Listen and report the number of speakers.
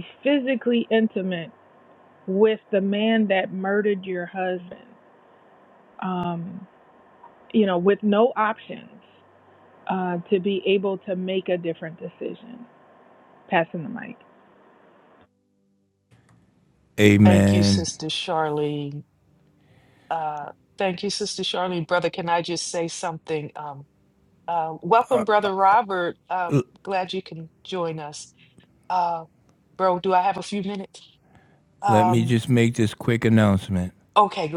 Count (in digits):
3